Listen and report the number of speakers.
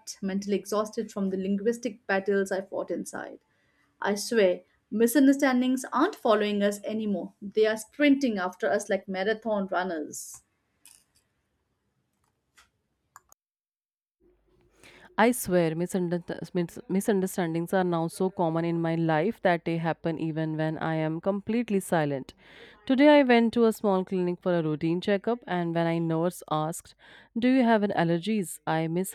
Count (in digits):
2